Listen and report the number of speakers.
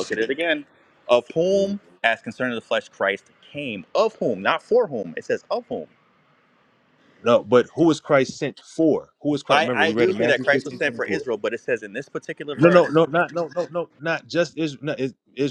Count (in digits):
2